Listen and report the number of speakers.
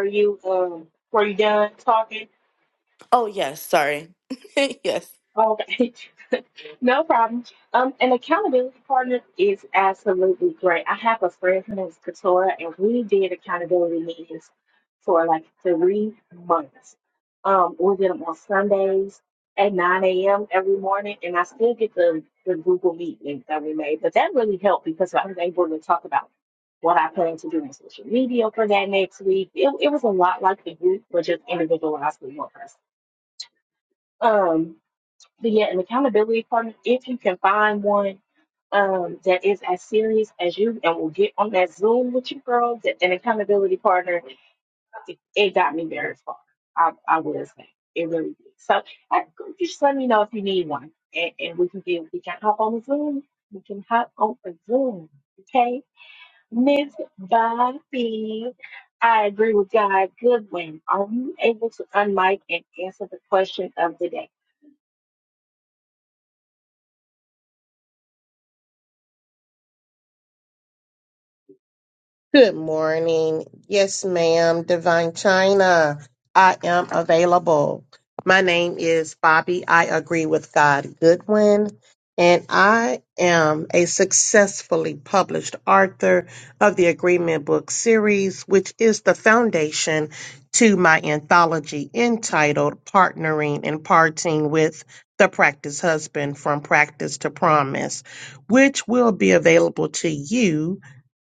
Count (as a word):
three